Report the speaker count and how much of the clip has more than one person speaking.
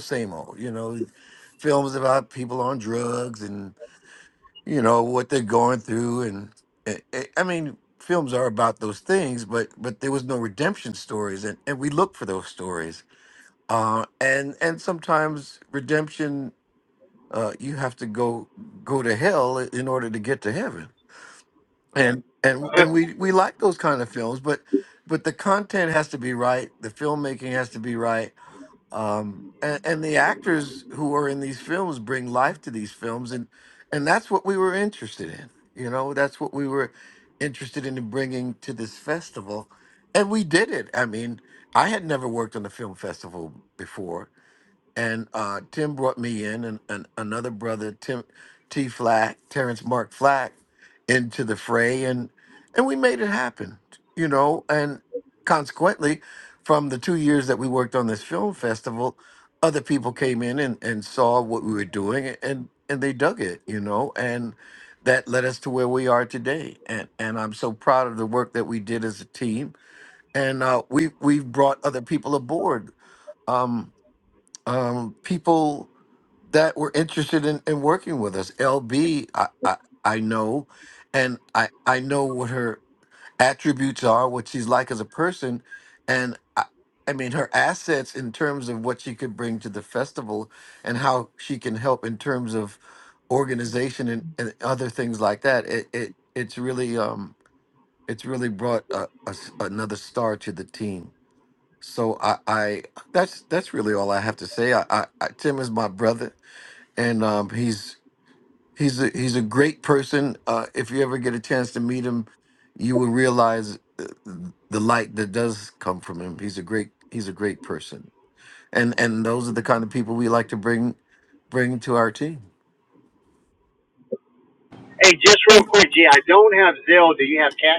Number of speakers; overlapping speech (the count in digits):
2, no overlap